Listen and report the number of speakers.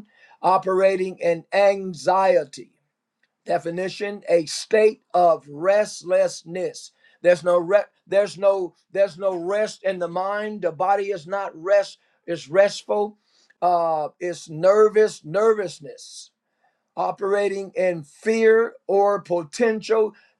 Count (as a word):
one